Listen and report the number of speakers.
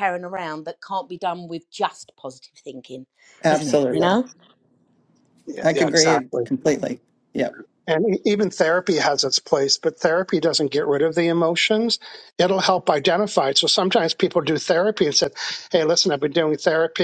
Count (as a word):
three